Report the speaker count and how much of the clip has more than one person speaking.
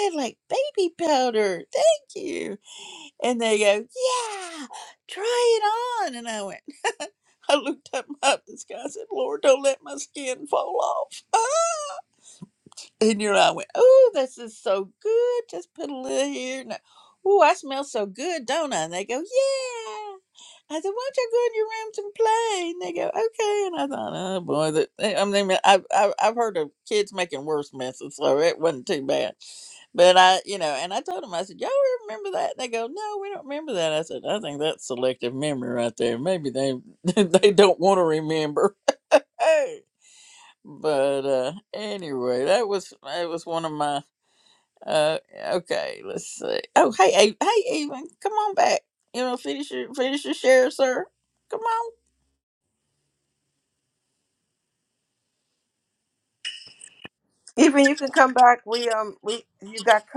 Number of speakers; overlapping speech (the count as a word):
two, no overlap